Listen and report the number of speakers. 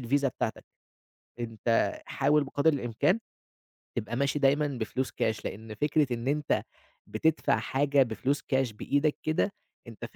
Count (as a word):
one